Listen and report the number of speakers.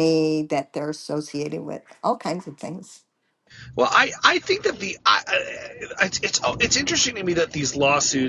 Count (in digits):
2